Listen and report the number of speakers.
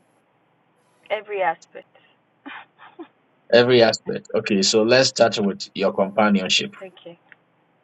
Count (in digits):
2